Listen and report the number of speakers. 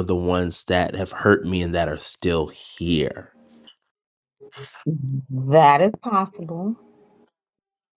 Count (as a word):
two